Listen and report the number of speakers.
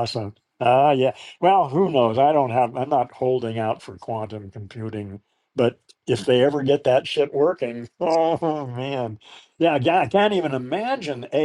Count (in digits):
1